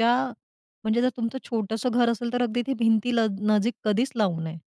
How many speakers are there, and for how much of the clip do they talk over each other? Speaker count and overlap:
1, no overlap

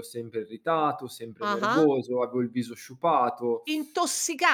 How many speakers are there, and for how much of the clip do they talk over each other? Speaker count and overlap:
2, about 11%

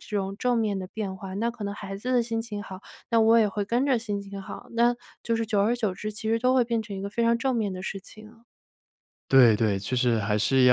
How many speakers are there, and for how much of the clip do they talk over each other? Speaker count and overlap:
2, no overlap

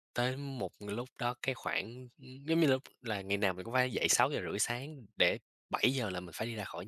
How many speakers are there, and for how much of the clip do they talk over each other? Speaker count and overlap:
1, no overlap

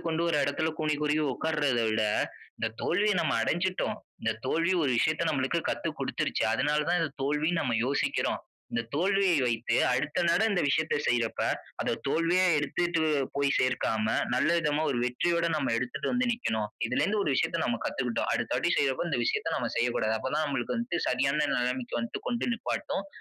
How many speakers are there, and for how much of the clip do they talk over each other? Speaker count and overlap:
1, no overlap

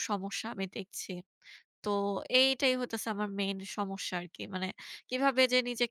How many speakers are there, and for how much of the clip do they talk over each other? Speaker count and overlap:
1, no overlap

